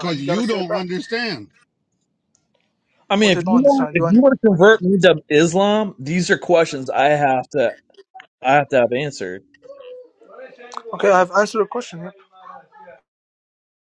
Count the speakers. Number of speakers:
three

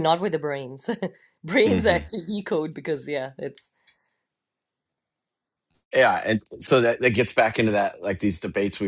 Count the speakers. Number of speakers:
two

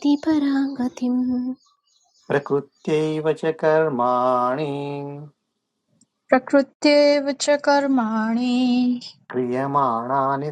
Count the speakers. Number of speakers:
three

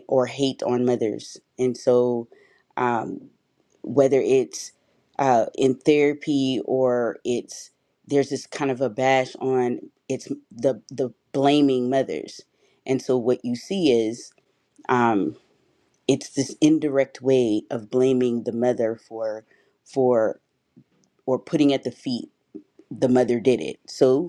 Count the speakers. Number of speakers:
one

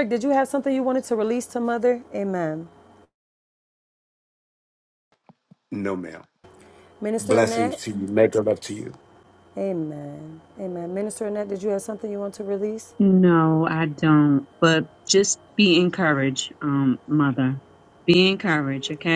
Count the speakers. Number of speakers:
three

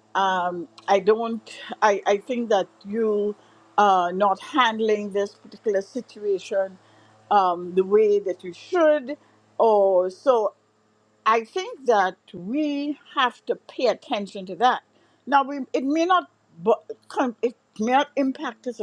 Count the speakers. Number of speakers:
one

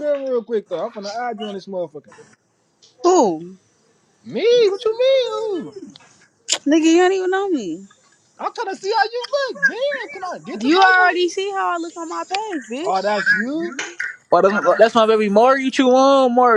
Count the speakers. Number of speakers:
three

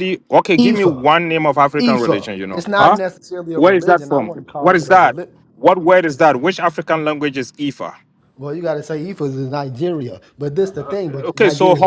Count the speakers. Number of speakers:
two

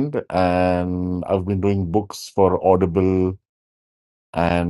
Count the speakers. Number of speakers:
one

